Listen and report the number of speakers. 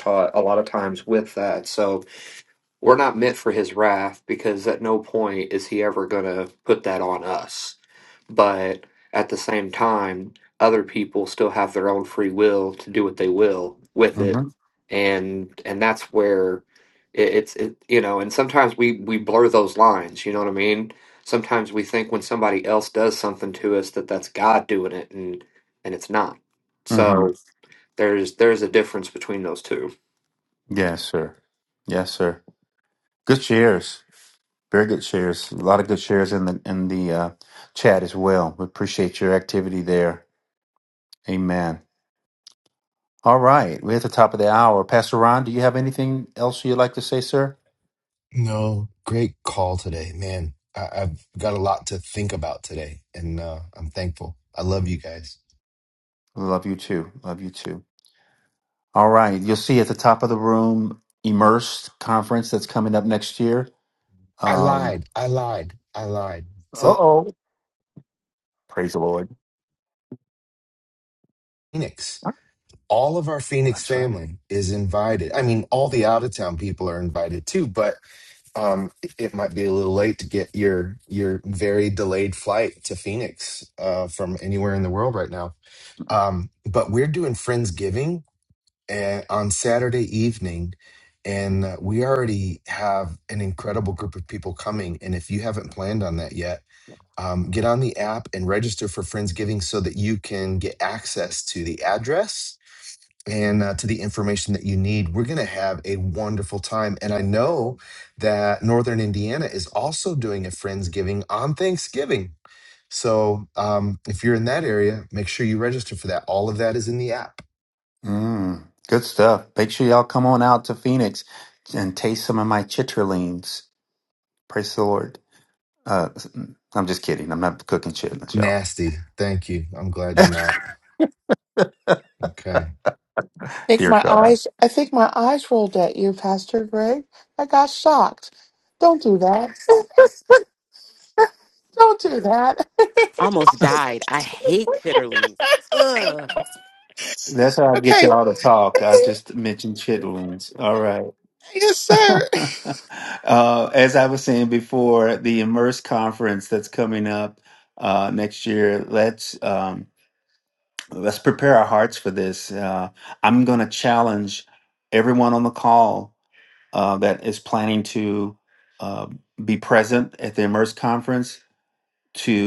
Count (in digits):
5